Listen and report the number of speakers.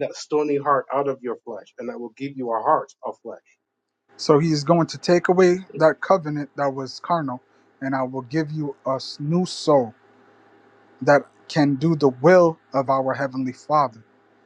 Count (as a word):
two